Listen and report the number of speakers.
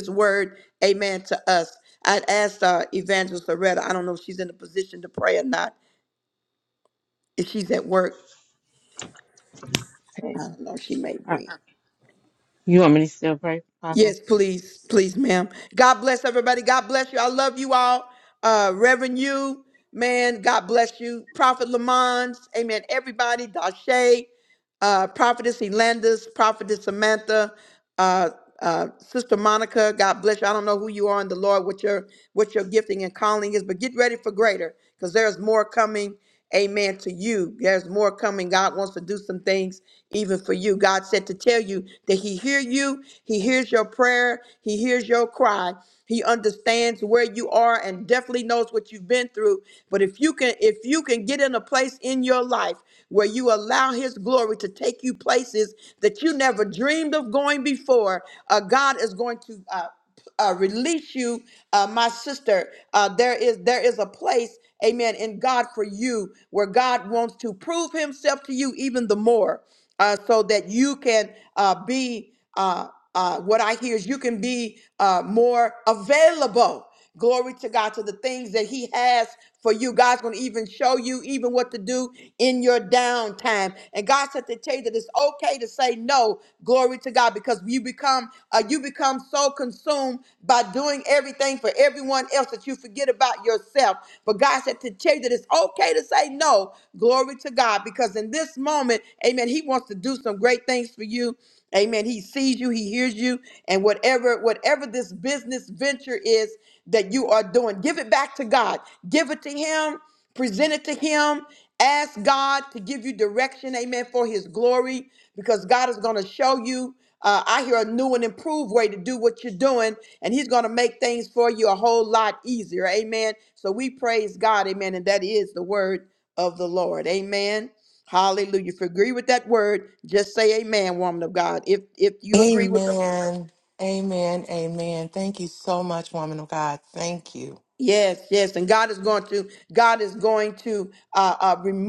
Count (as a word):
three